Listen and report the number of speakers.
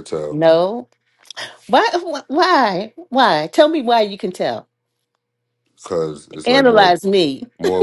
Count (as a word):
two